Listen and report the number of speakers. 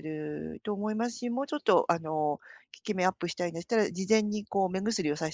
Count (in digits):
1